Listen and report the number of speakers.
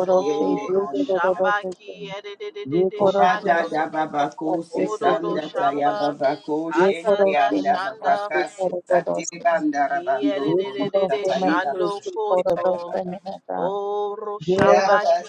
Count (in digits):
3